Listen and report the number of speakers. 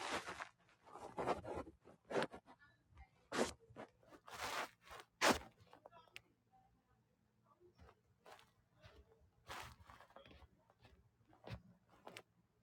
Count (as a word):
zero